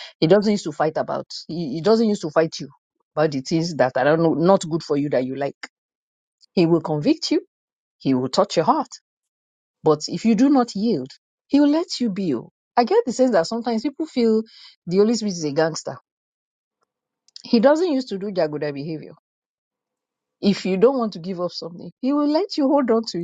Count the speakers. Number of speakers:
1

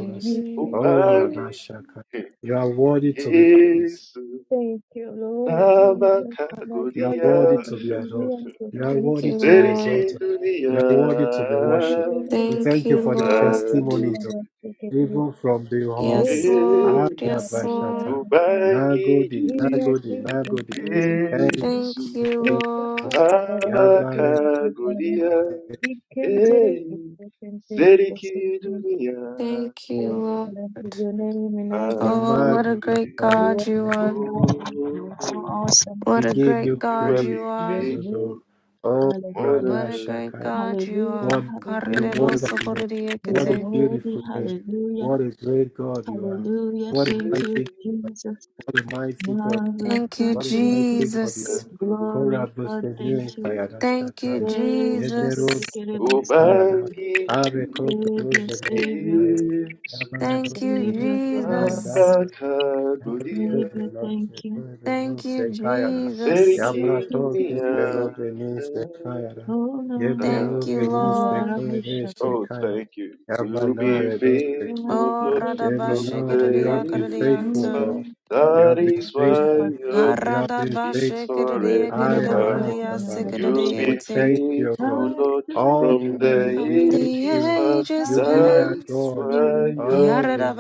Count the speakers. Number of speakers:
4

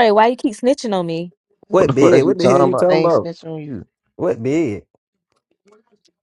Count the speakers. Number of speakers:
3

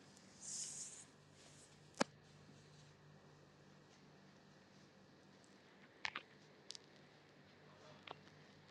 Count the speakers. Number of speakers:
0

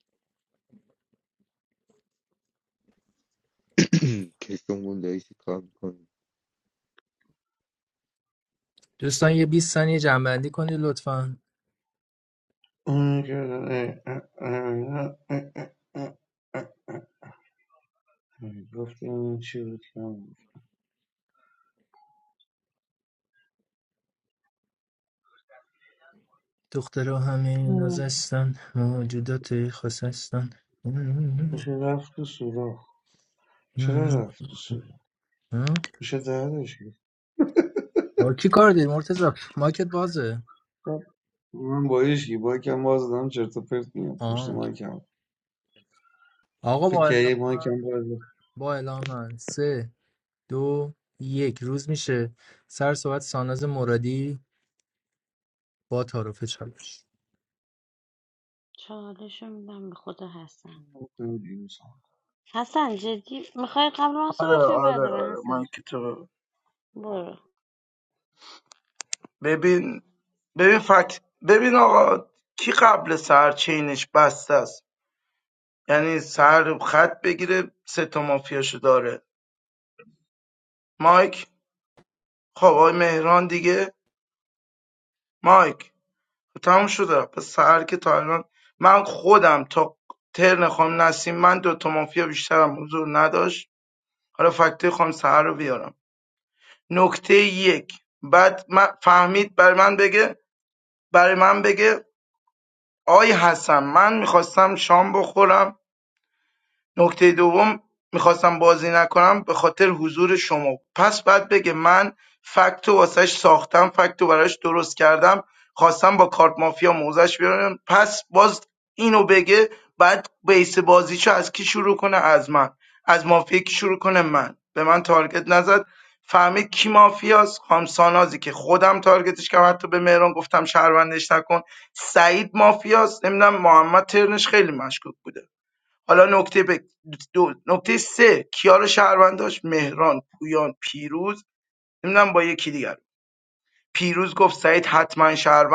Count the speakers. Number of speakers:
5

